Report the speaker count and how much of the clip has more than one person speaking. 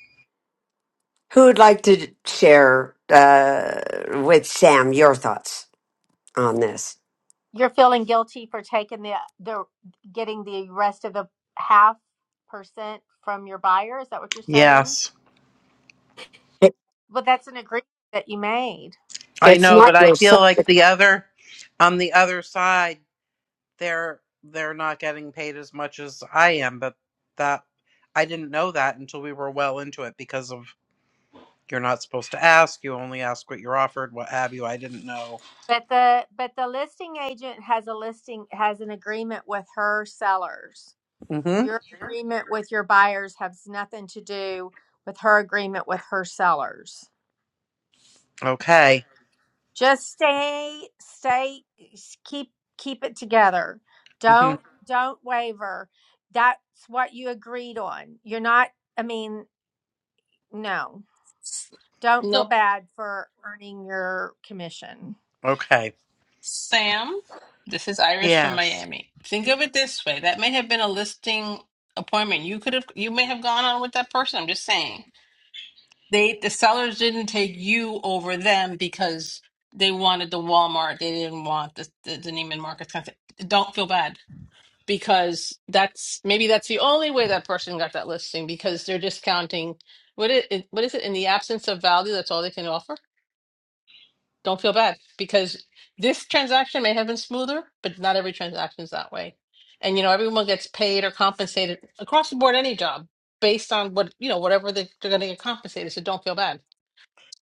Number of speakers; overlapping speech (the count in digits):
4, about 2%